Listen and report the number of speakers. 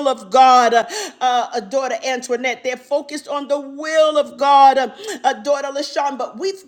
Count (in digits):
1